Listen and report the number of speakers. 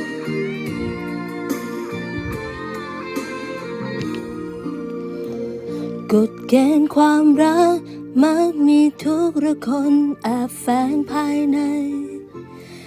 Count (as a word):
one